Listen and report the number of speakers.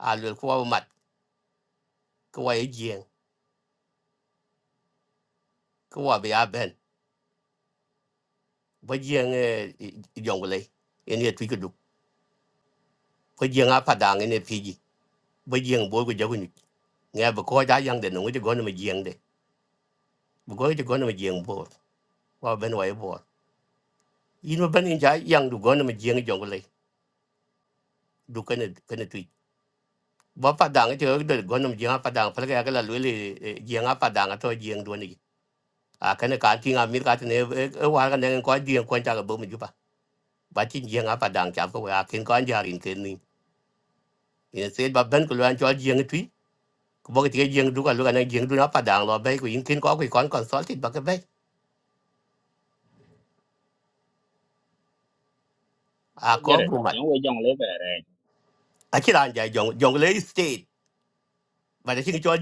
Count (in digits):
2